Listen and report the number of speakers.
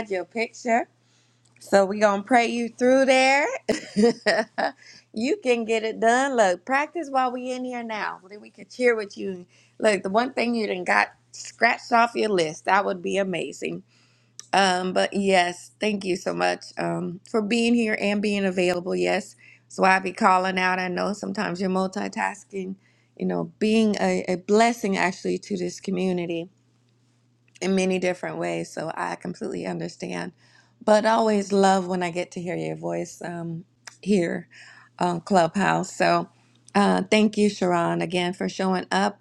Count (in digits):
1